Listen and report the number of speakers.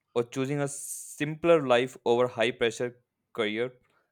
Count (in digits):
1